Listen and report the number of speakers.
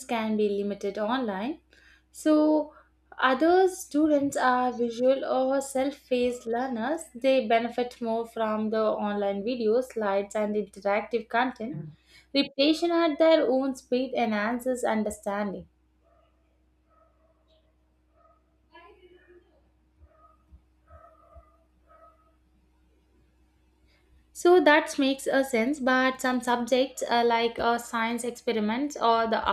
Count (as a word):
one